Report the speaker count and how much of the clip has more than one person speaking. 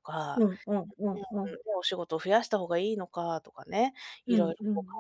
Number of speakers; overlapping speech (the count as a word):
two, about 15%